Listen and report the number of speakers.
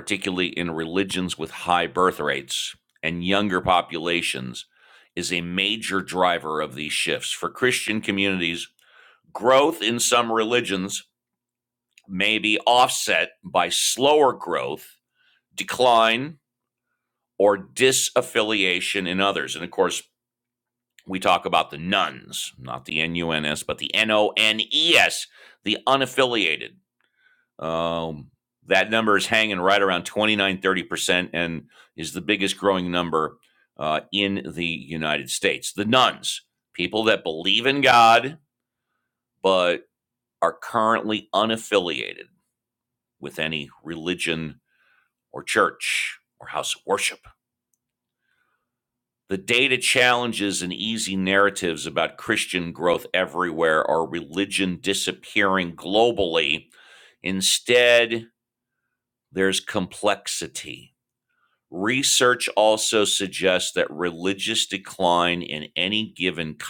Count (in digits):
1